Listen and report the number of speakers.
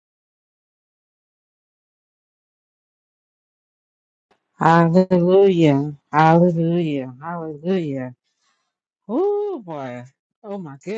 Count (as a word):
one